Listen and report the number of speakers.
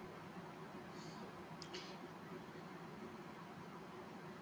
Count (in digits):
0